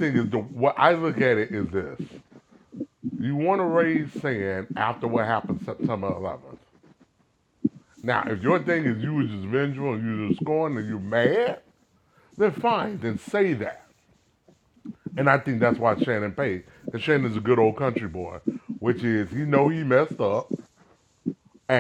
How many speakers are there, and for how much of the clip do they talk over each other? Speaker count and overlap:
1, no overlap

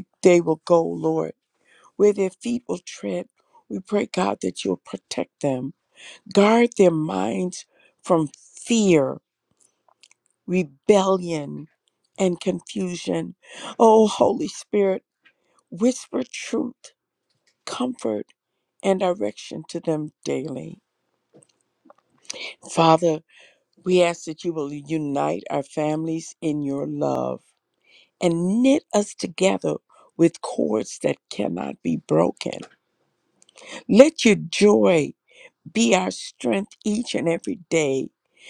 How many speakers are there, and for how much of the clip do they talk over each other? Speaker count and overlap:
1, no overlap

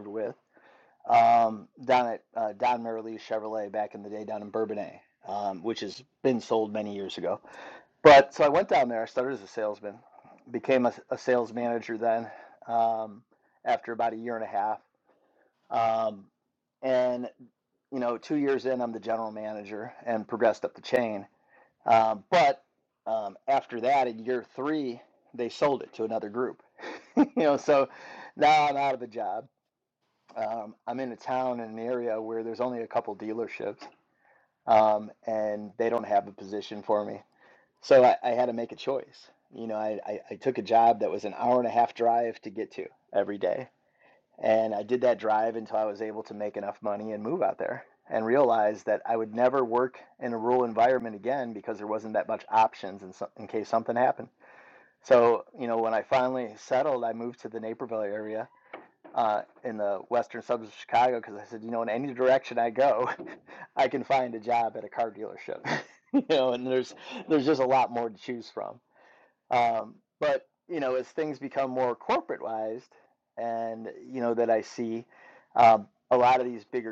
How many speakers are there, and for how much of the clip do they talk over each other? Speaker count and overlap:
1, no overlap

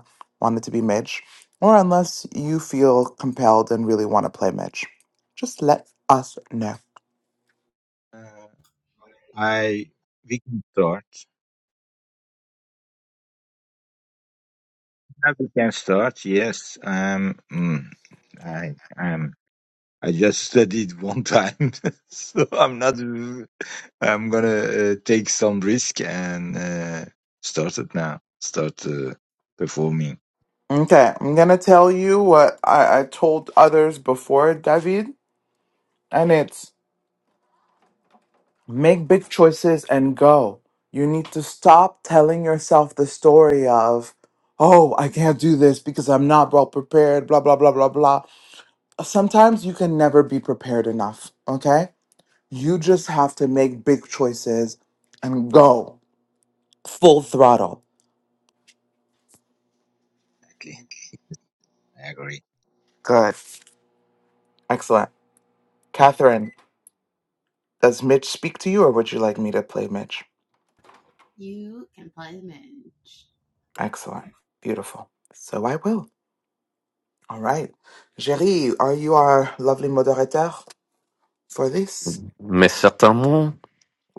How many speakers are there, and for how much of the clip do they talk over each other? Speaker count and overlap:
4, no overlap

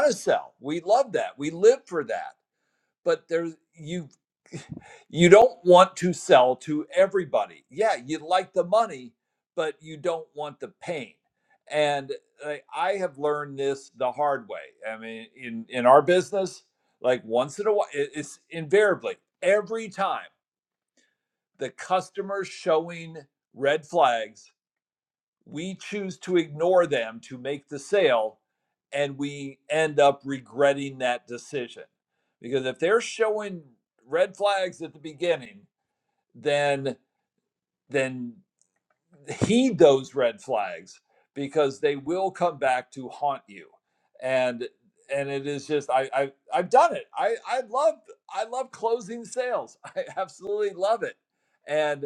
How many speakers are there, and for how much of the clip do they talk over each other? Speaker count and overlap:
1, no overlap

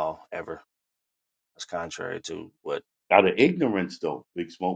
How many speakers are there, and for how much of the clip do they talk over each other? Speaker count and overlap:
2, no overlap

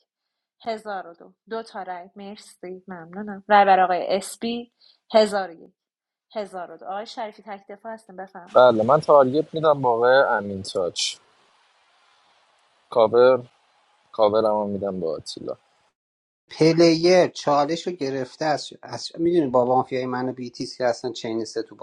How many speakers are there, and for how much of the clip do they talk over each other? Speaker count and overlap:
3, no overlap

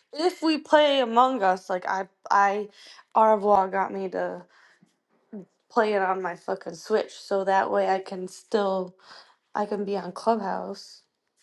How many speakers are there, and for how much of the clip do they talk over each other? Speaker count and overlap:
1, no overlap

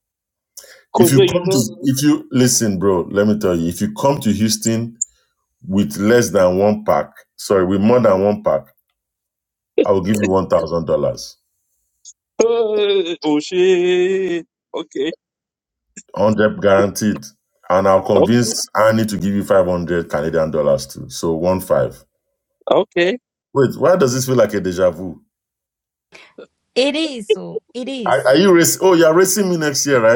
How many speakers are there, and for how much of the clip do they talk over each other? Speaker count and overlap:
3, about 4%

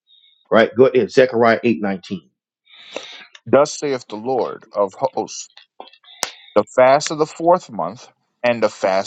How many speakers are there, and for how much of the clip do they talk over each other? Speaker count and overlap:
2, no overlap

